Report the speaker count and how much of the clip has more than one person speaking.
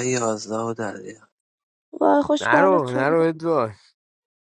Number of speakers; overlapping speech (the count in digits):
3, about 19%